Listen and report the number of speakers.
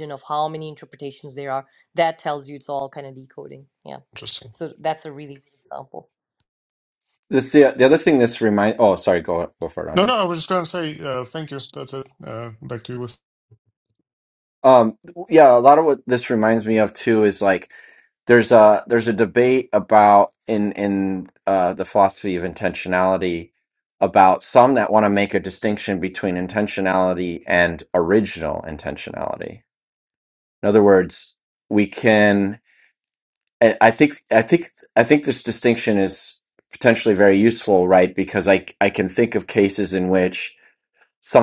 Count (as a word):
three